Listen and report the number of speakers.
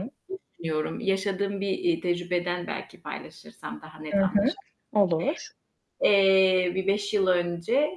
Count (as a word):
two